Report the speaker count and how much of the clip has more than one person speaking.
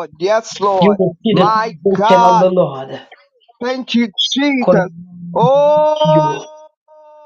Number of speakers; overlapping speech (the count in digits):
2, about 28%